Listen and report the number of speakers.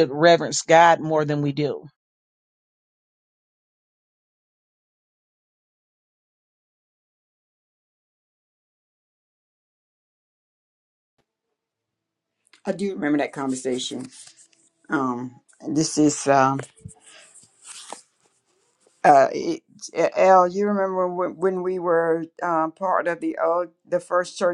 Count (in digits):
2